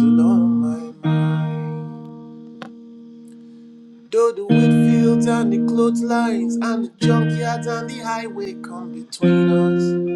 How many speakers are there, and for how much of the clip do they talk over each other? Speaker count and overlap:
1, no overlap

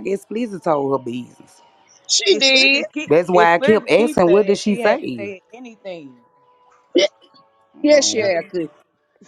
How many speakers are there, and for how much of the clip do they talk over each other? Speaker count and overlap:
3, about 34%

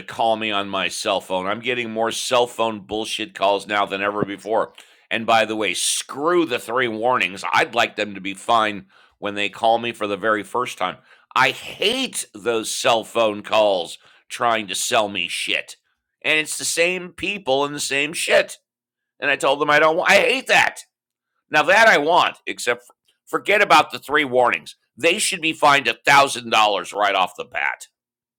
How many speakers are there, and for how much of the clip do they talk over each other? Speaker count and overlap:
1, no overlap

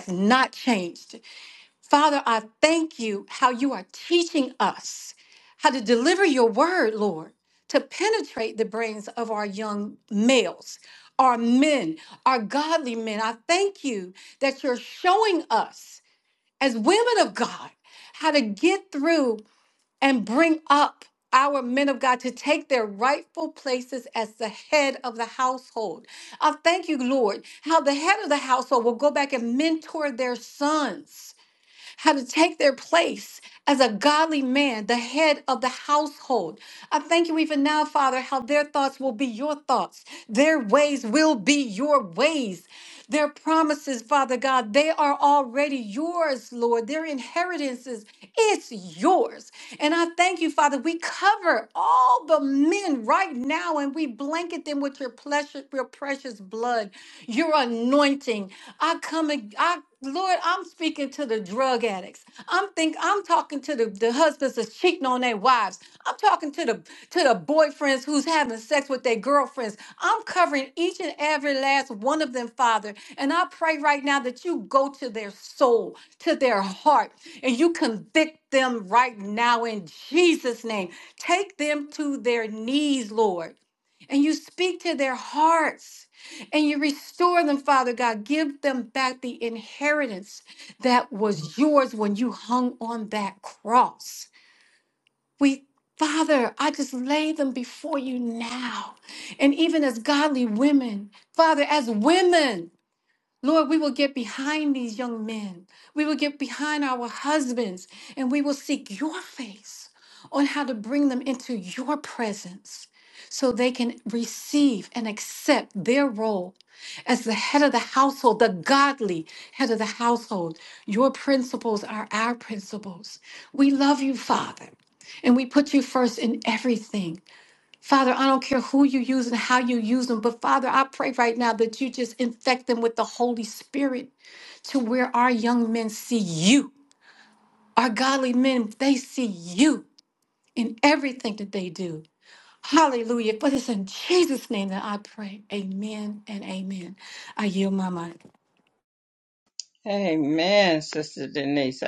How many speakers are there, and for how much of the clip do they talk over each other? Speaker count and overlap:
2, no overlap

